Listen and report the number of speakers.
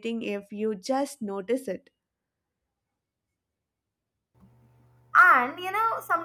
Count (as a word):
two